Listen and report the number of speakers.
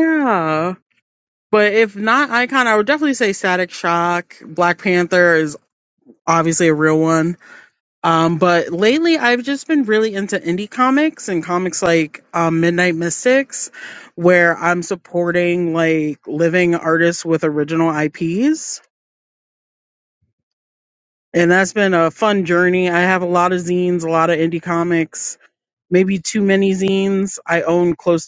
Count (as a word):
one